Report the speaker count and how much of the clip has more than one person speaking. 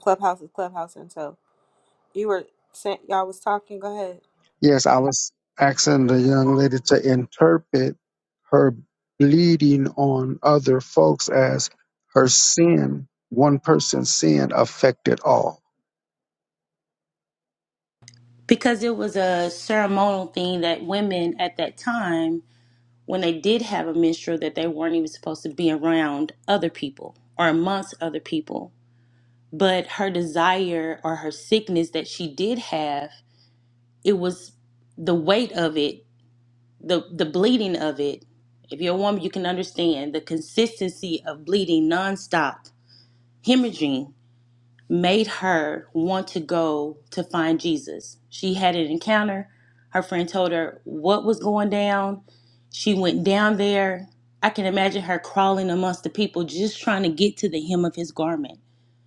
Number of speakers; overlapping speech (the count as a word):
three, no overlap